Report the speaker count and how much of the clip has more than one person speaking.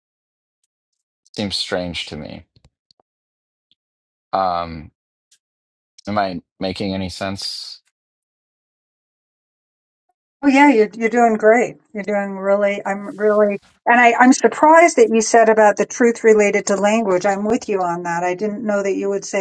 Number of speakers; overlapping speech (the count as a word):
two, no overlap